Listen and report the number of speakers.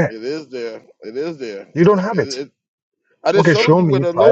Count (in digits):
2